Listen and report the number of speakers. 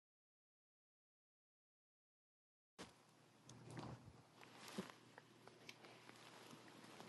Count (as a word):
zero